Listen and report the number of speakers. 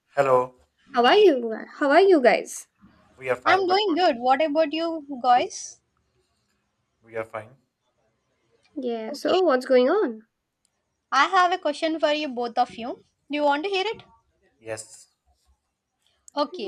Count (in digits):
3